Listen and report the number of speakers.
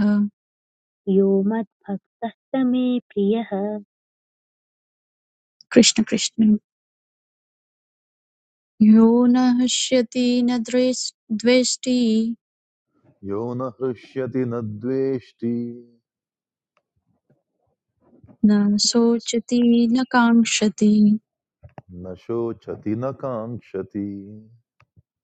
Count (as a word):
three